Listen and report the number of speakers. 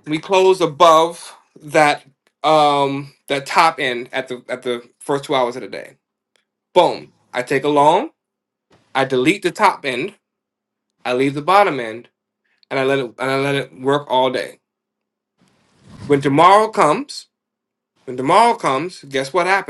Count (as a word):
one